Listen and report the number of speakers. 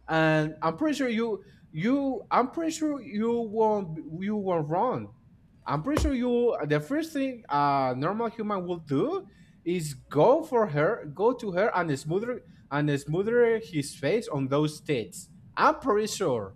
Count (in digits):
1